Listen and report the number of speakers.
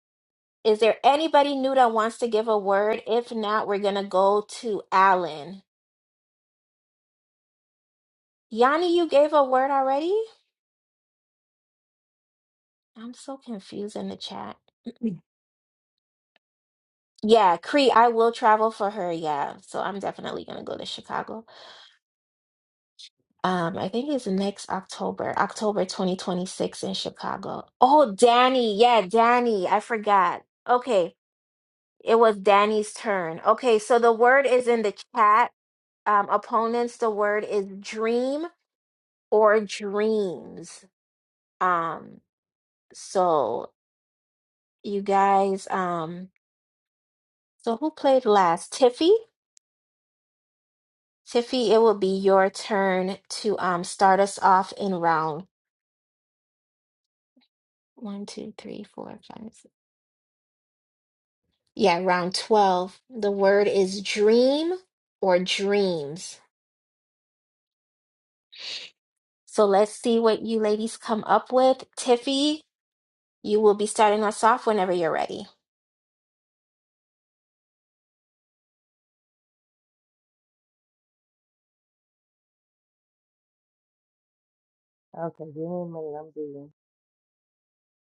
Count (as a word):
two